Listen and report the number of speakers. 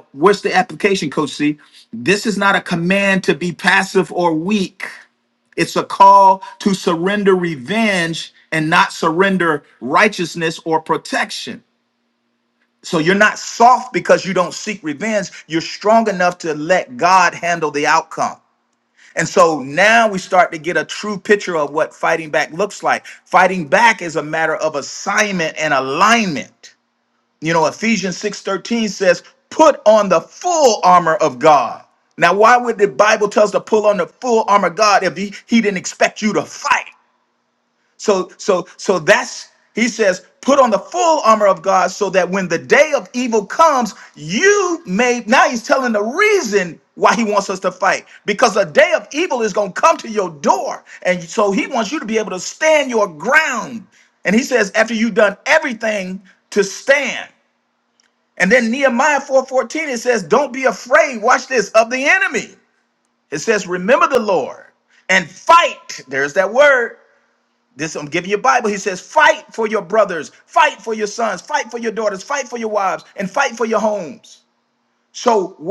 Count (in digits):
1